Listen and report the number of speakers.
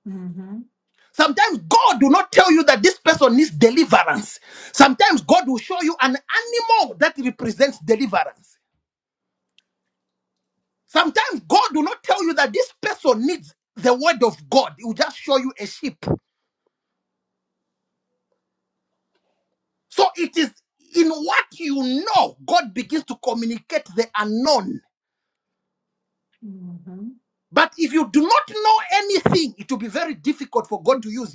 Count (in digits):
2